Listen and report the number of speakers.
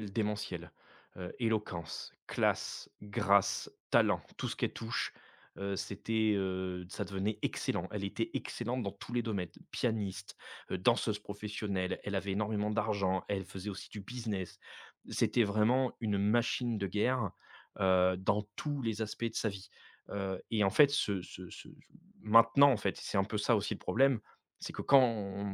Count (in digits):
1